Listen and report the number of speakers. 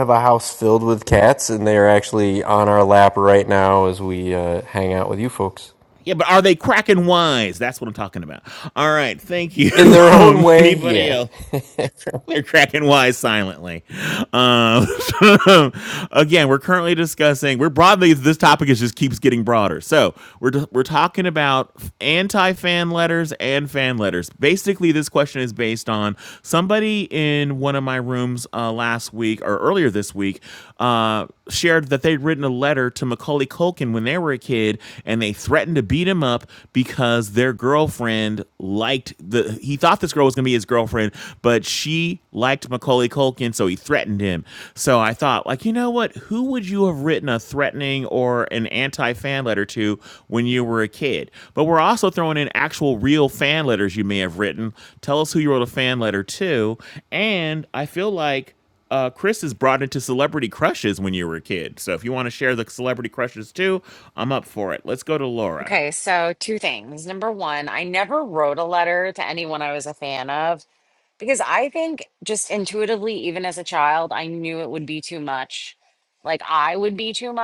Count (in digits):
3